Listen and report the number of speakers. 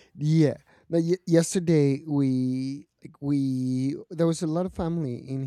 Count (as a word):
one